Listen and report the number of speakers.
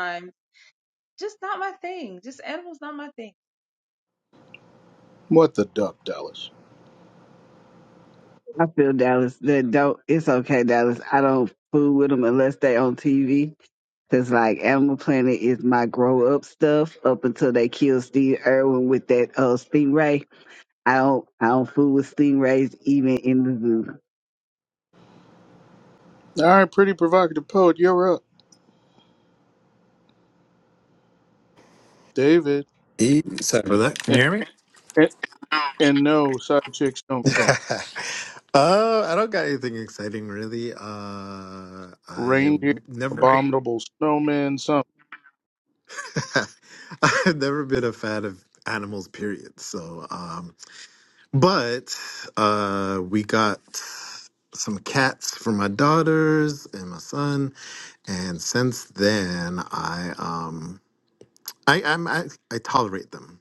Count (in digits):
4